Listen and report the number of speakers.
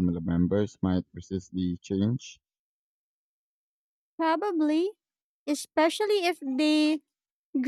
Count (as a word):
two